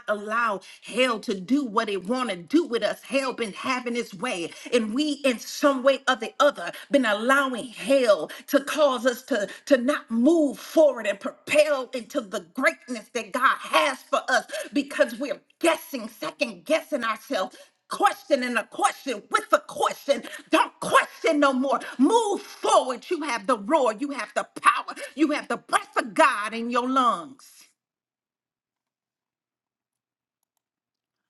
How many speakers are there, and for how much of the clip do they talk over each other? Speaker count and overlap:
1, no overlap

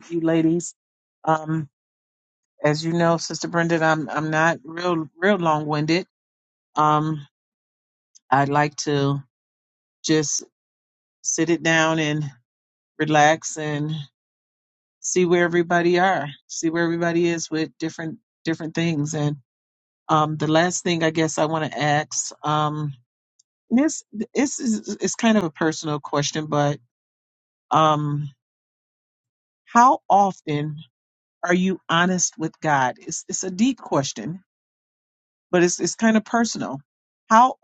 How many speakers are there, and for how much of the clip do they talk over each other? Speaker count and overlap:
1, no overlap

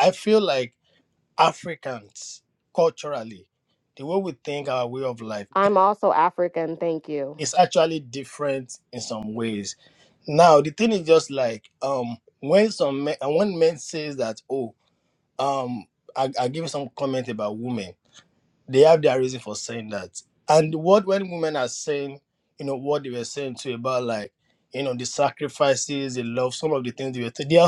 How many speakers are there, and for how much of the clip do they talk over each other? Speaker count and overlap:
2, no overlap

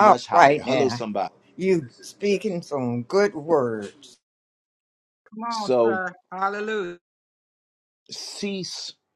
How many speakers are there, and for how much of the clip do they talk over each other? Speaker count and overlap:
3, about 14%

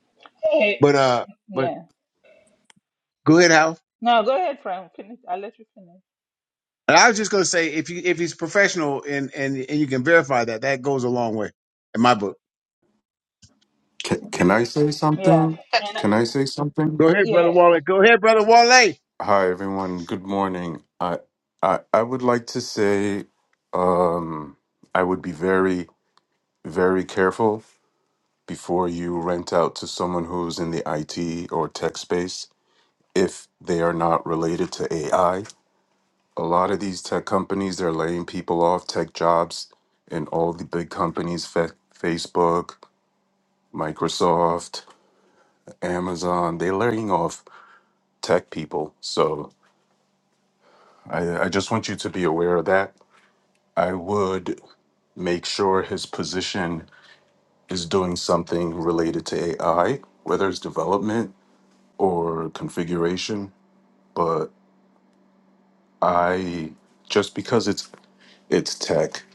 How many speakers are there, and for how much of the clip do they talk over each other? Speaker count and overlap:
3, about 2%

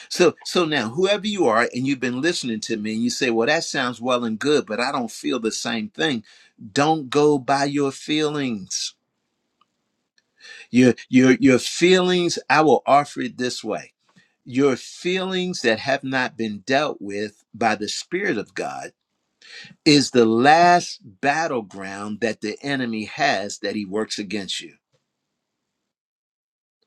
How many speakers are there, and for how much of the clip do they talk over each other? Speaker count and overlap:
1, no overlap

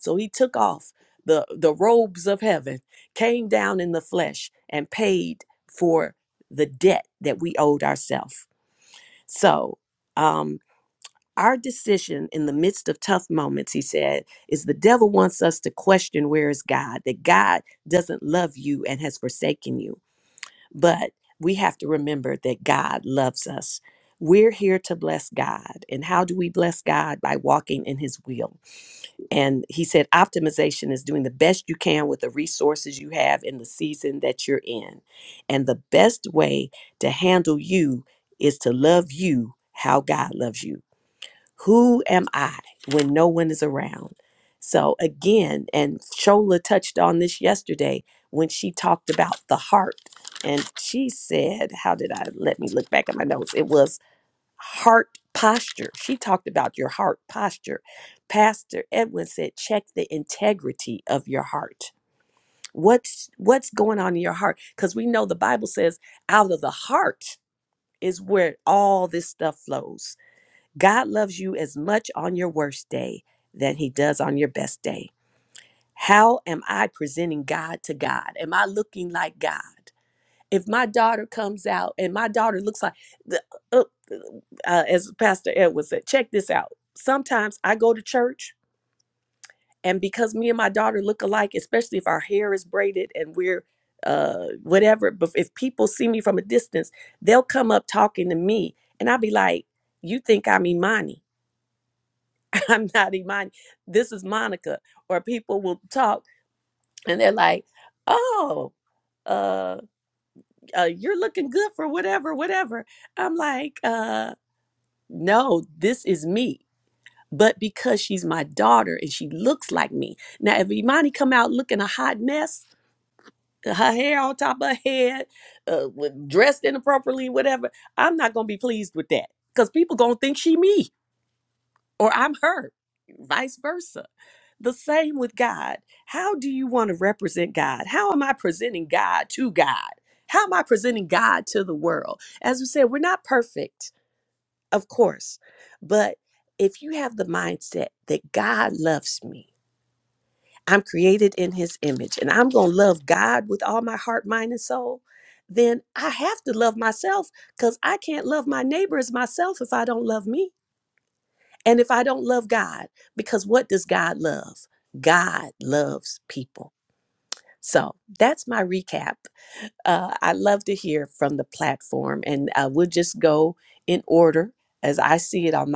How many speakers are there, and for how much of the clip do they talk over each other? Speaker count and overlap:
1, no overlap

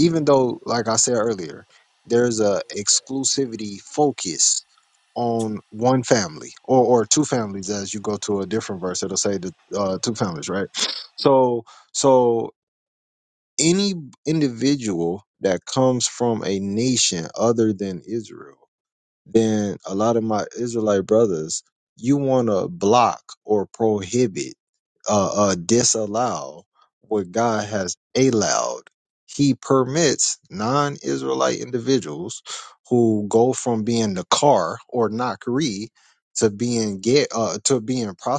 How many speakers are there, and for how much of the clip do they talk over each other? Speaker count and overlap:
1, no overlap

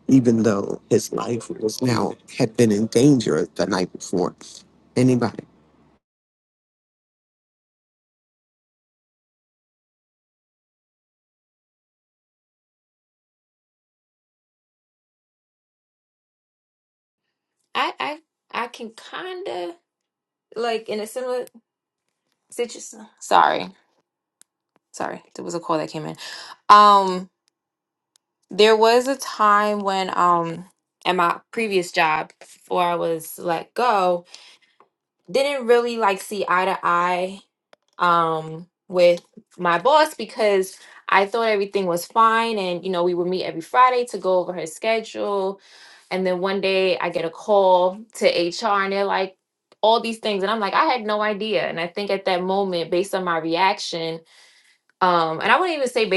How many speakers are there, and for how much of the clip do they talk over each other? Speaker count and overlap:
2, no overlap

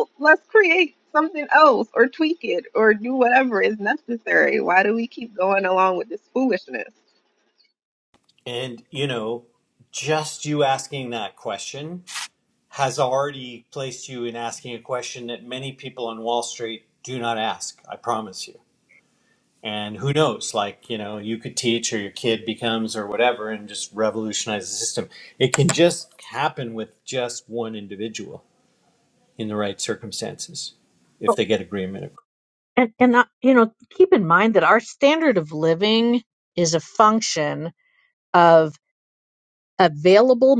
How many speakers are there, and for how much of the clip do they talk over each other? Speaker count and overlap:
3, under 1%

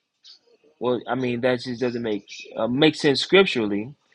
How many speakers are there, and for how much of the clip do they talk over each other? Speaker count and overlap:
1, no overlap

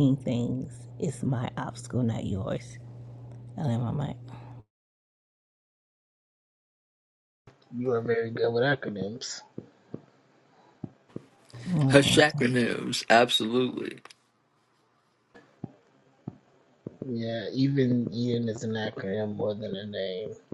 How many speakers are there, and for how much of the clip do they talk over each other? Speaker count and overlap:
3, about 2%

